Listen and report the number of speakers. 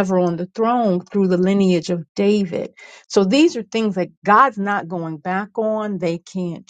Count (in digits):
1